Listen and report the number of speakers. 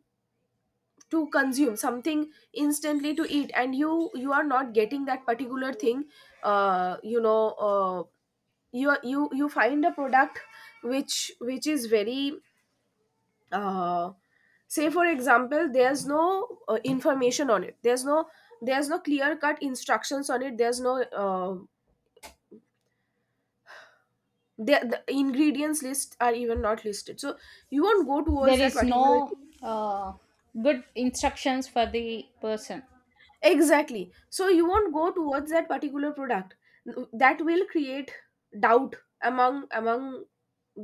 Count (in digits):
2